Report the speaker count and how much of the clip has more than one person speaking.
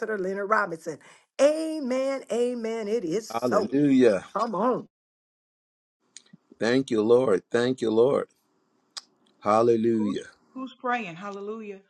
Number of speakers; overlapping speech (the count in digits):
3, about 5%